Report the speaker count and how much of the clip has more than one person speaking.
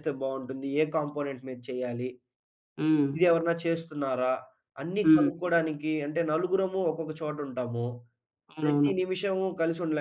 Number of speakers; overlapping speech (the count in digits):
2, about 7%